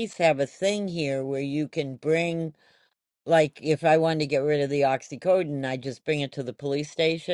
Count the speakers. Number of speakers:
1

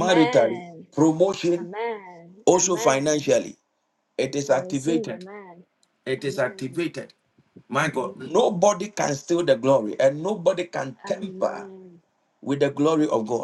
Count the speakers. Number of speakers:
2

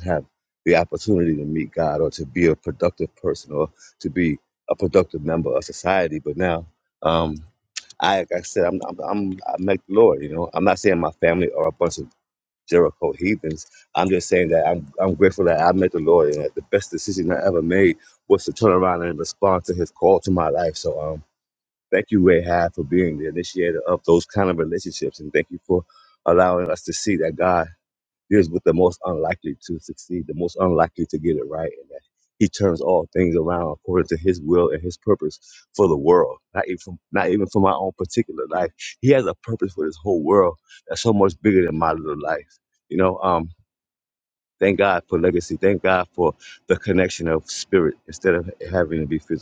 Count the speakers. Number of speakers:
1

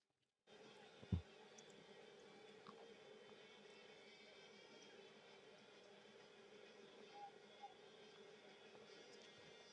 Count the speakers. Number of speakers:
0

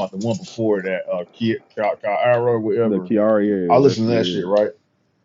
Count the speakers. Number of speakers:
2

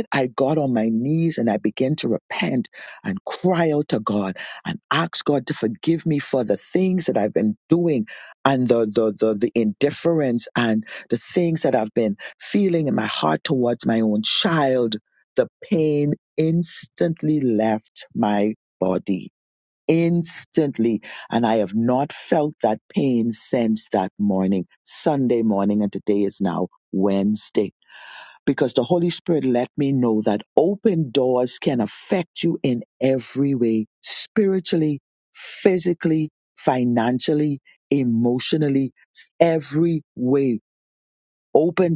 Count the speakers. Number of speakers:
1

